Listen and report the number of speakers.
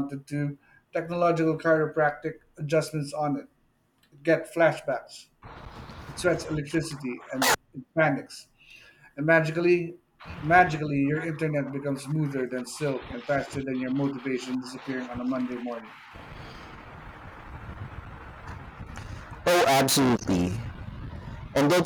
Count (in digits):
2